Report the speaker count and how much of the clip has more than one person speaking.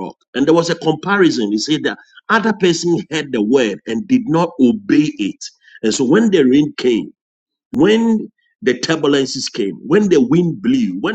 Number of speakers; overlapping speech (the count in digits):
1, no overlap